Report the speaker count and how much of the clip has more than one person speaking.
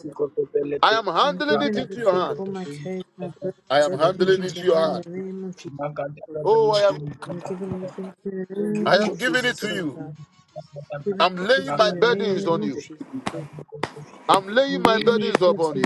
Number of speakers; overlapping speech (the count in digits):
3, about 59%